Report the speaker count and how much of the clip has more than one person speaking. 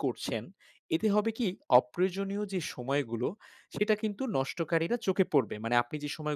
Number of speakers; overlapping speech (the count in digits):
1, no overlap